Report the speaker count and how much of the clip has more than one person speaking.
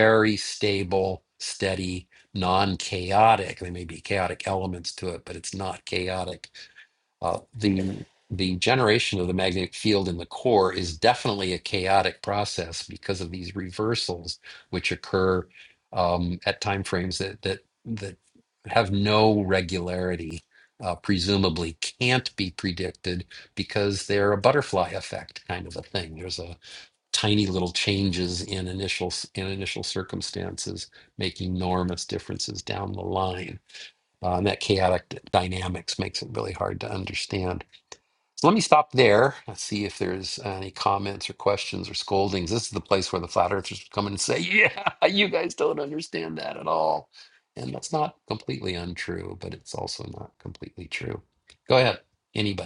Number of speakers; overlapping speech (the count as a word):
one, no overlap